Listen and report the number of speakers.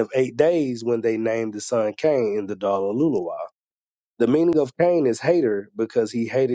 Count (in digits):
1